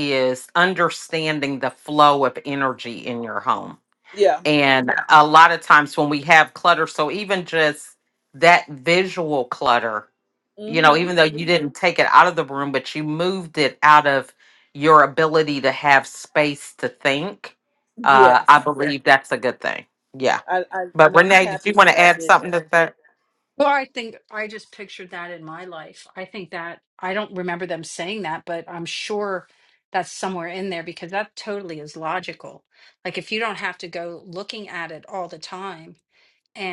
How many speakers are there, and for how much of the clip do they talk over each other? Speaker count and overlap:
3, about 7%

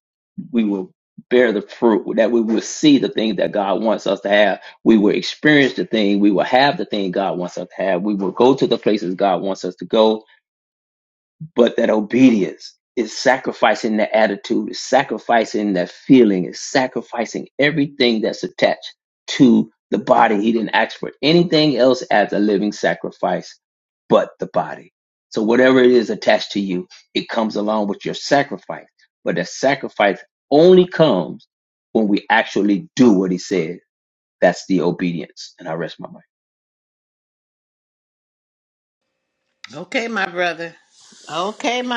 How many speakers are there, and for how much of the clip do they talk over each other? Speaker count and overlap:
2, no overlap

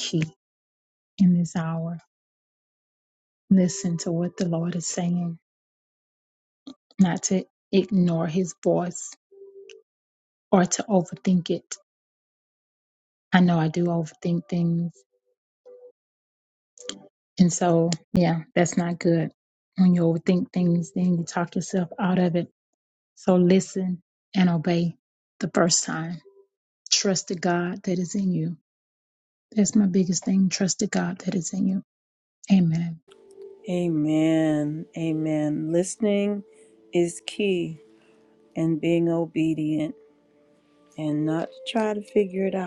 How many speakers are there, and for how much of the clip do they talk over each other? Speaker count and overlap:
2, no overlap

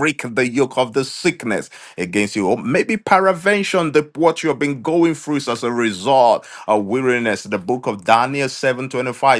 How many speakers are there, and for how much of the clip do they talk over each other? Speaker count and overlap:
1, no overlap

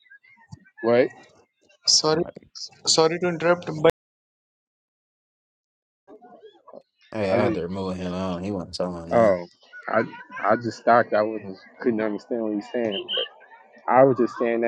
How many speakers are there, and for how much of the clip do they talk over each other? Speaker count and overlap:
3, about 4%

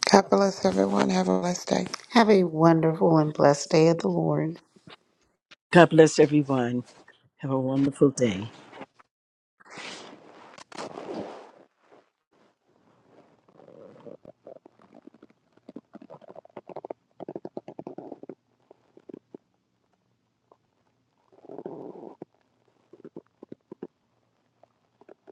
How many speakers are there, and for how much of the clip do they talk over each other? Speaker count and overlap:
3, no overlap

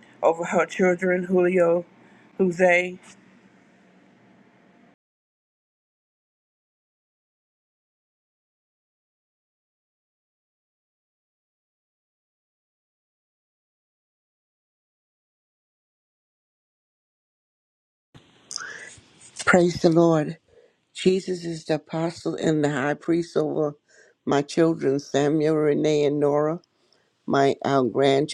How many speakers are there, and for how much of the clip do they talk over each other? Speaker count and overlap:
2, no overlap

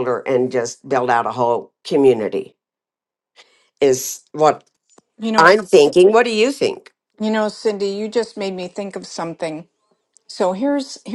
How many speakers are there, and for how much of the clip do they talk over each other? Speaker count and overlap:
2, about 2%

